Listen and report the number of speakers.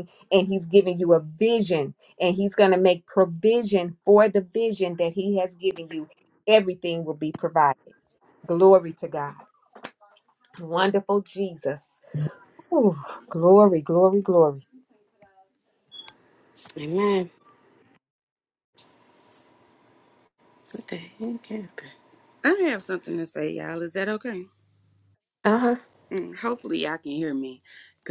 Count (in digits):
3